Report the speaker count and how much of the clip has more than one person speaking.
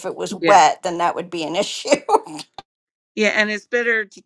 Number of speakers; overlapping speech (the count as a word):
two, about 5%